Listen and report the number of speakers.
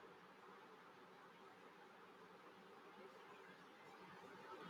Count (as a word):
zero